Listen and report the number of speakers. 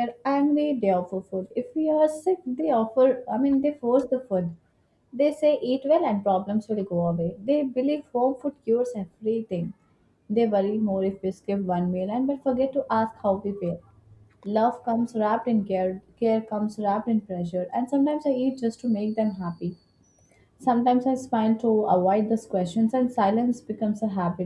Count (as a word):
one